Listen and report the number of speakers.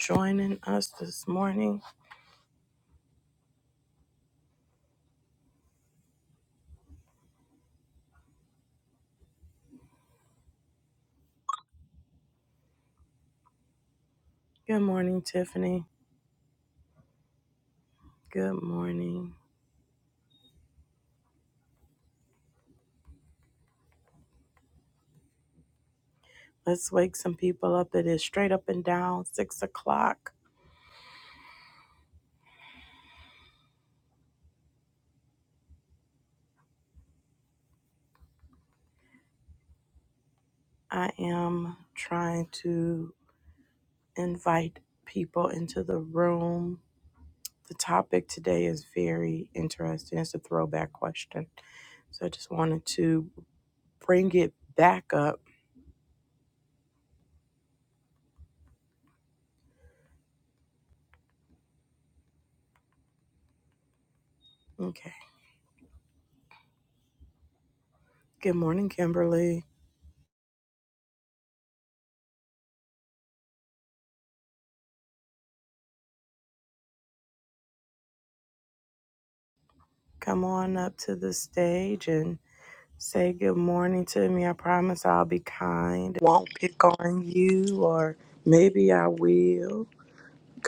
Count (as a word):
one